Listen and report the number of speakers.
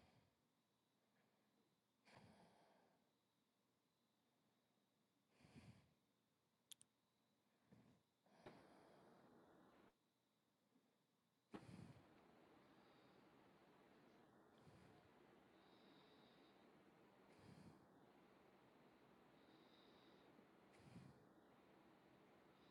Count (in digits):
0